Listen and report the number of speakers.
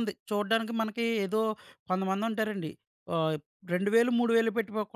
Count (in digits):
1